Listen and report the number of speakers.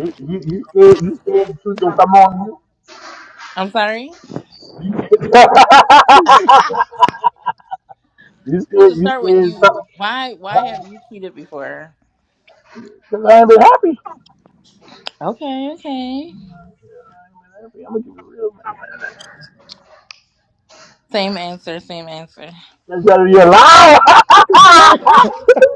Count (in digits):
2